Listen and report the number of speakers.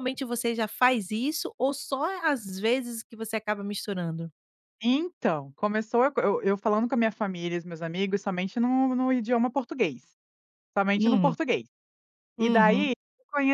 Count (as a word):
two